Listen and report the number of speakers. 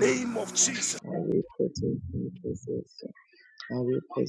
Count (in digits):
2